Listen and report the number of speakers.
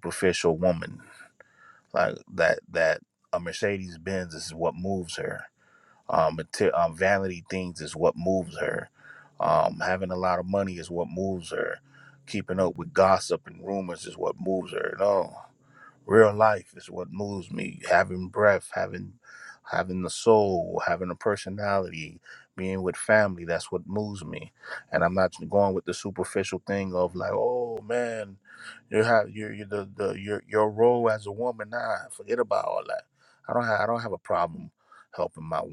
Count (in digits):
1